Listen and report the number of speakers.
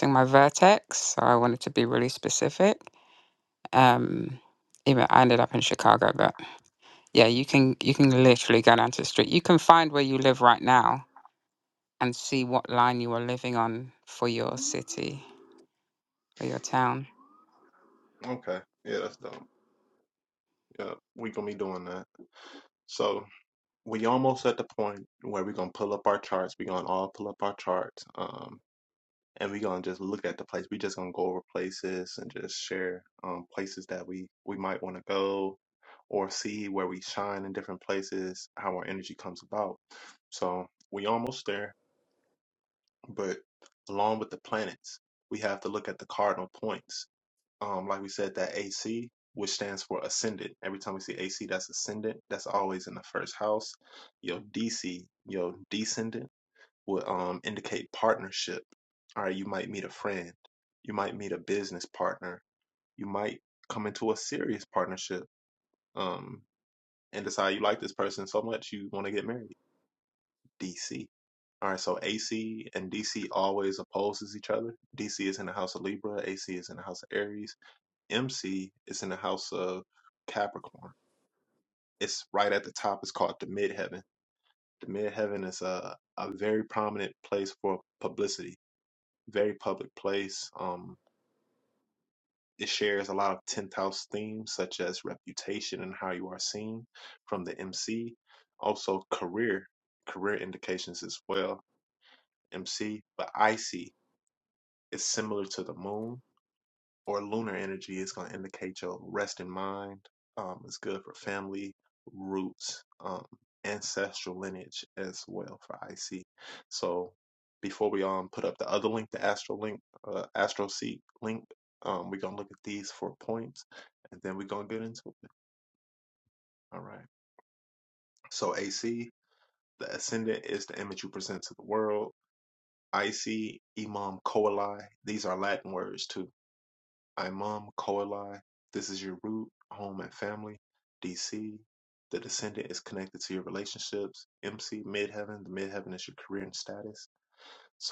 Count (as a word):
two